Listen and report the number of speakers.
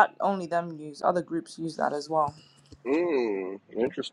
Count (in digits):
2